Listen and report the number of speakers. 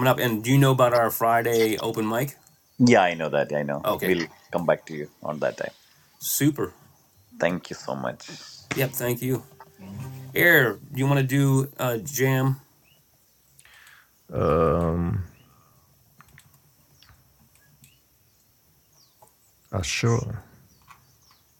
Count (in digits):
3